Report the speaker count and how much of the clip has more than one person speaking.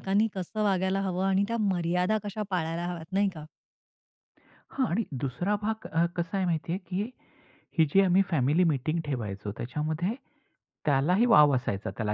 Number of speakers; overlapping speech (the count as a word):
two, no overlap